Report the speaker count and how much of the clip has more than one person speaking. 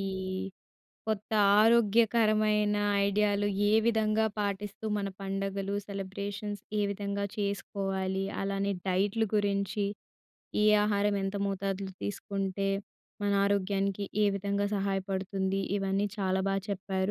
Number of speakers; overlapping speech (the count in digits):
1, no overlap